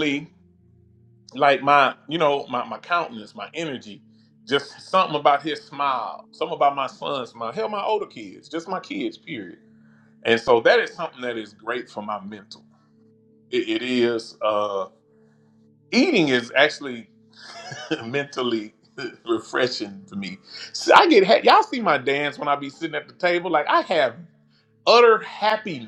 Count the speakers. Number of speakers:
1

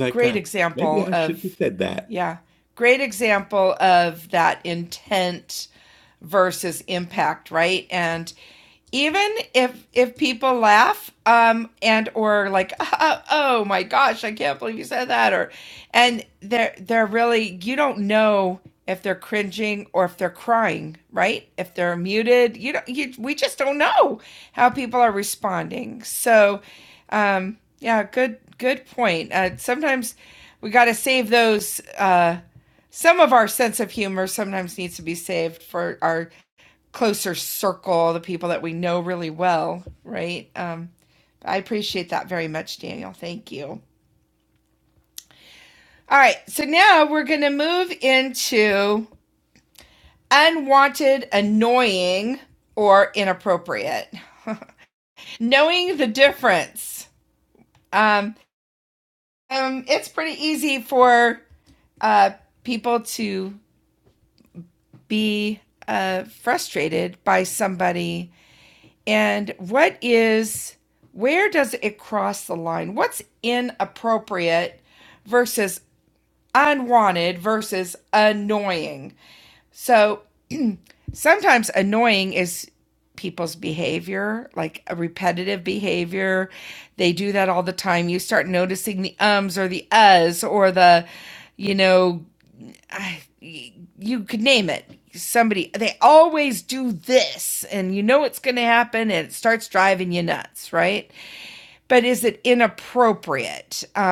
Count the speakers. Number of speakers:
1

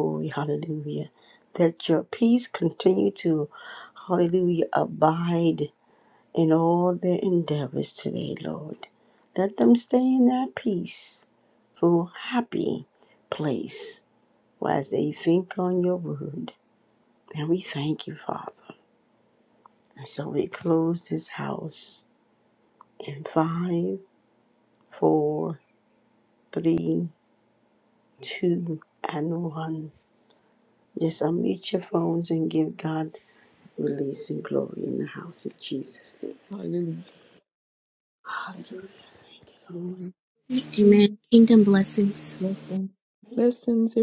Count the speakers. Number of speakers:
3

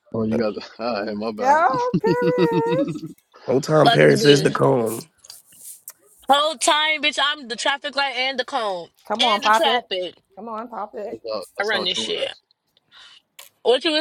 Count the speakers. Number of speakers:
4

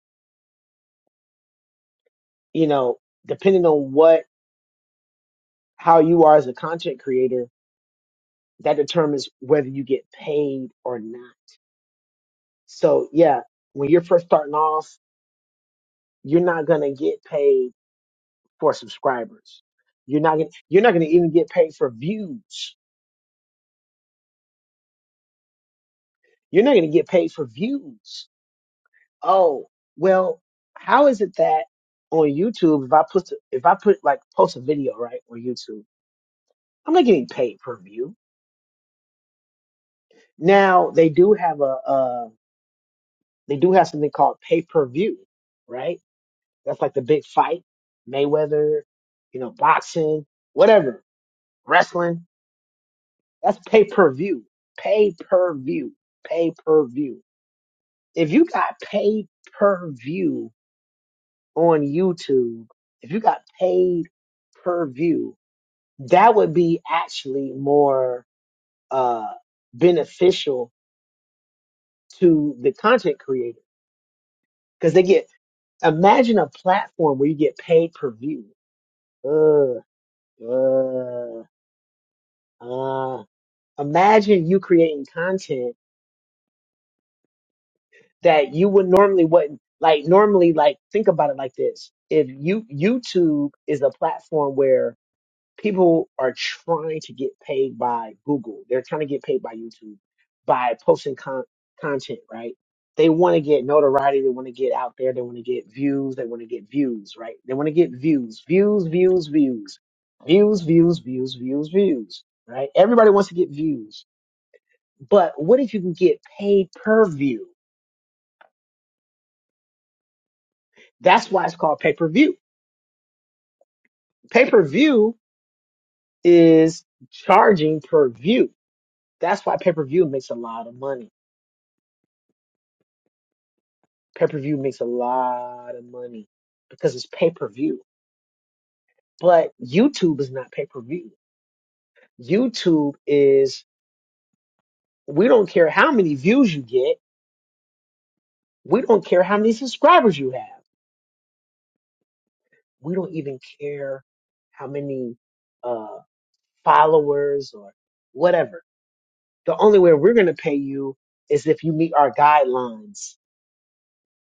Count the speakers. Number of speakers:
1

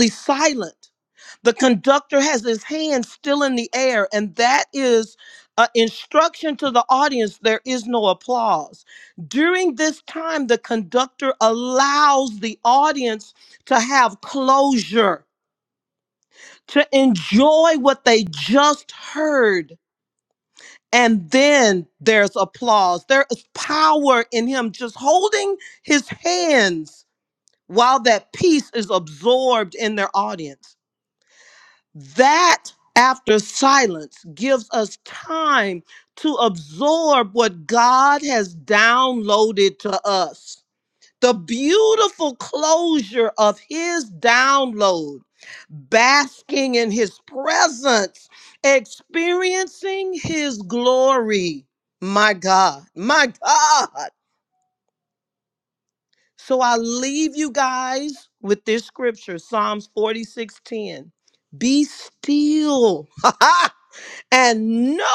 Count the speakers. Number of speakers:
1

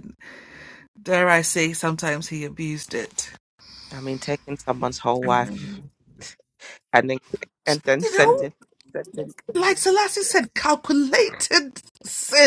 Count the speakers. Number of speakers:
2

